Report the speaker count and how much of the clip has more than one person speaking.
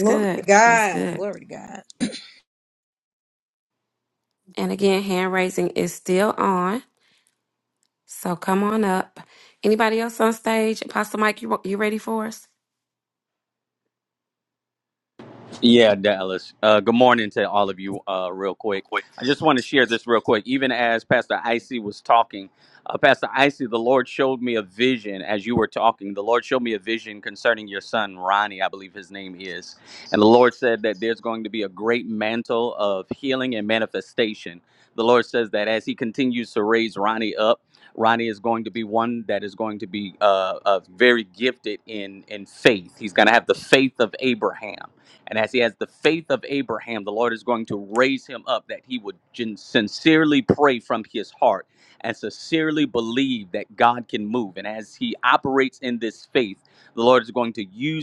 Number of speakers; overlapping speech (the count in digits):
3, about 2%